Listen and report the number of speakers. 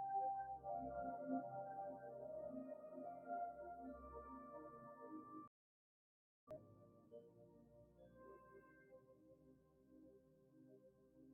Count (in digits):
0